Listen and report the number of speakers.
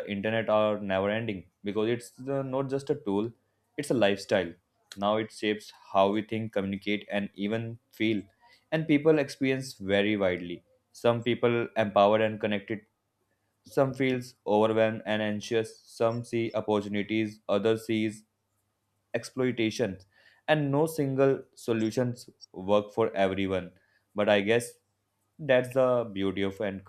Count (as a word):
one